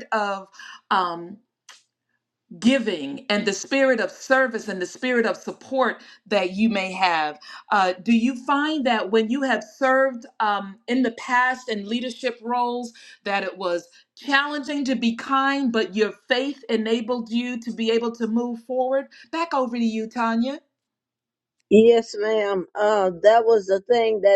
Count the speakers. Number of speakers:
2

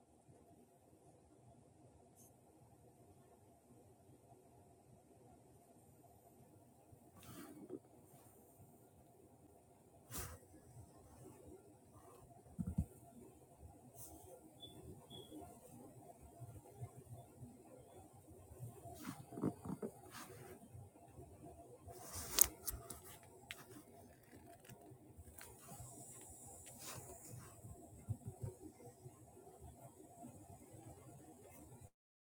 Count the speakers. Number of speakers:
0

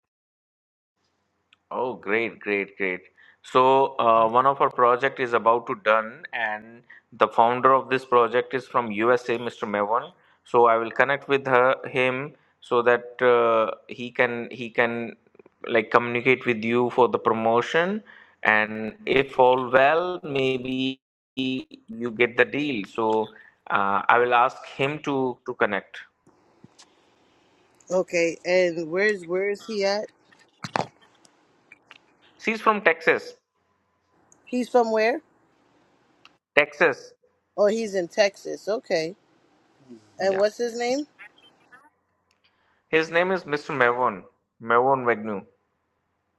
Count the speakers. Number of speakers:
2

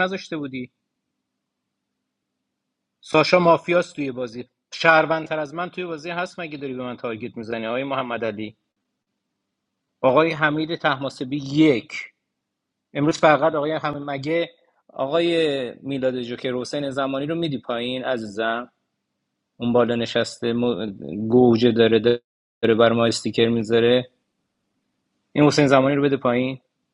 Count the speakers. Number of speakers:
1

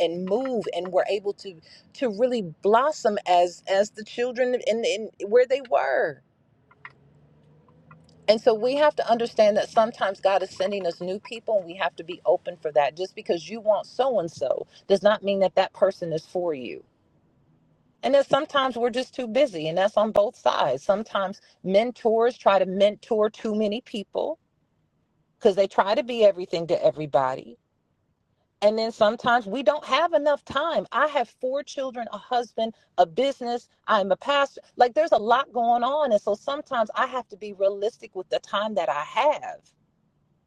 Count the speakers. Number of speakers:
1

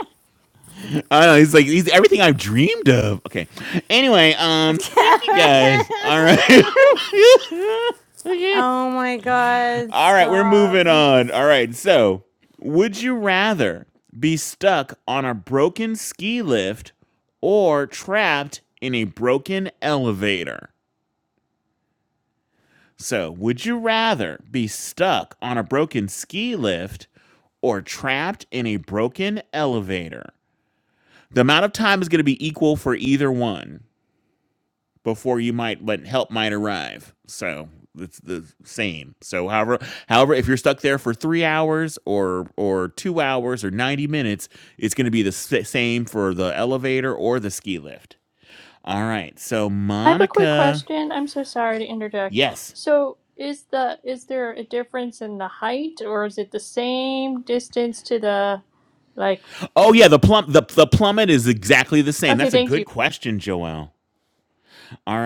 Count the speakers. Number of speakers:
3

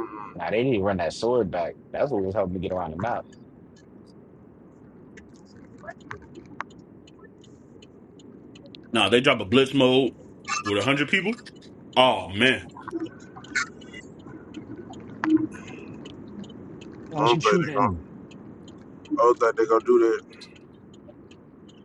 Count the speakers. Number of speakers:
3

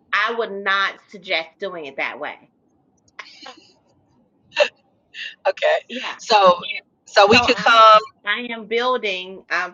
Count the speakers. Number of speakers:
2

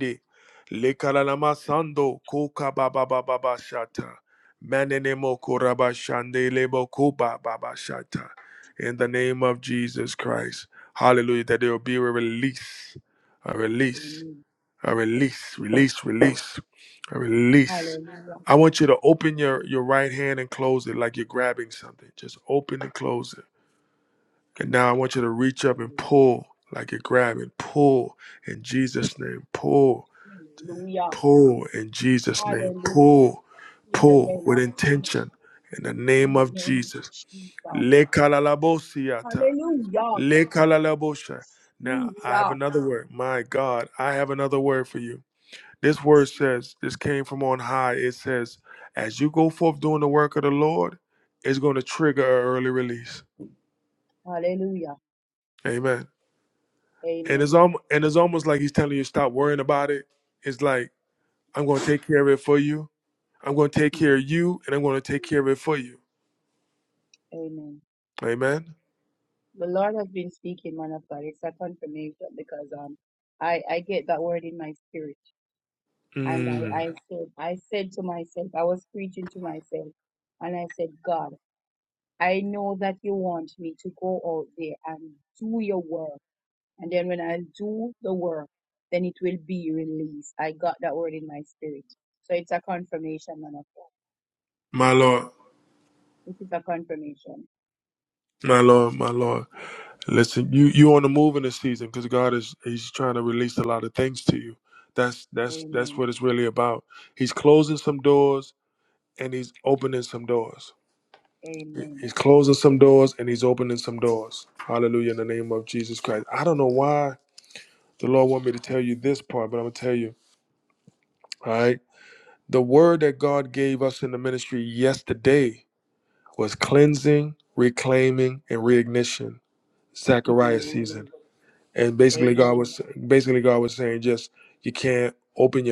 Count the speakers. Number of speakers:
2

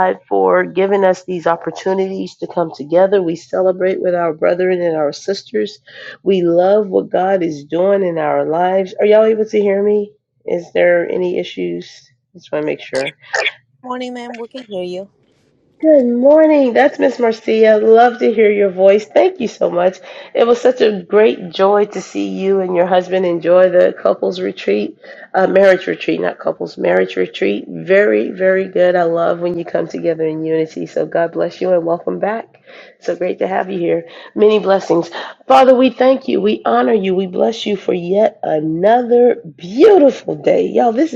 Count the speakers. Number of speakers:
2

